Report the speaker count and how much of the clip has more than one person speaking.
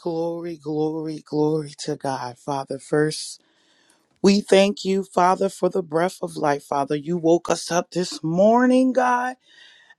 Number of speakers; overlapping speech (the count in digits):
1, no overlap